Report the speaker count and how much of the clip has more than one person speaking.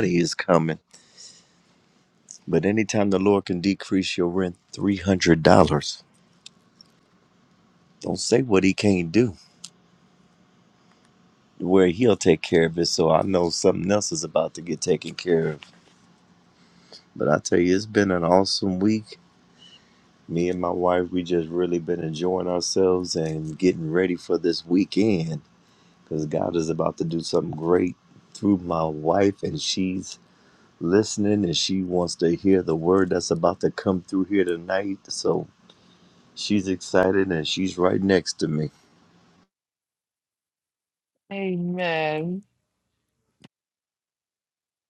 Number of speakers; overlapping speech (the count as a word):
two, no overlap